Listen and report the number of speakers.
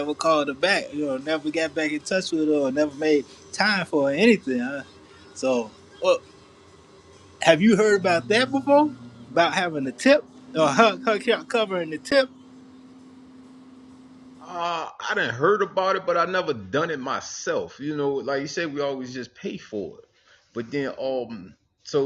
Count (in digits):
2